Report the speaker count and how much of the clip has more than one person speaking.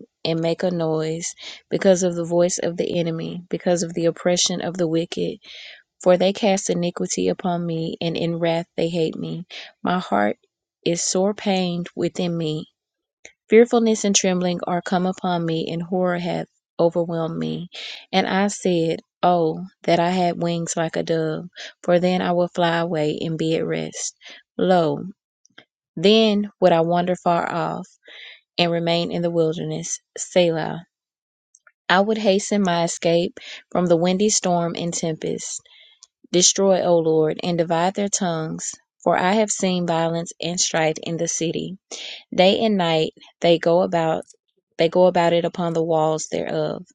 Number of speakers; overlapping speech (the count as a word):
one, no overlap